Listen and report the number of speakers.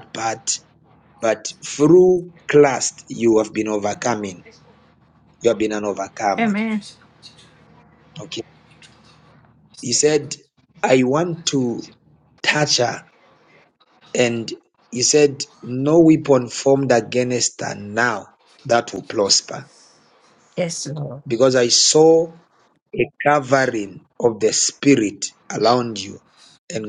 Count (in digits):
2